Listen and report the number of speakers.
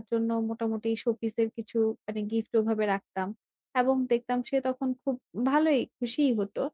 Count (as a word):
one